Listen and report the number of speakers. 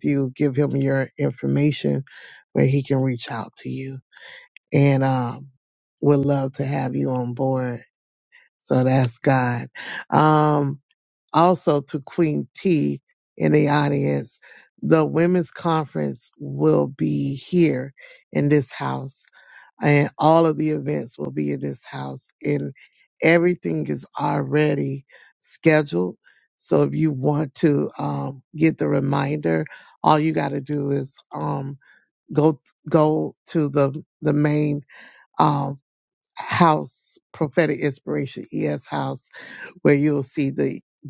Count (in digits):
1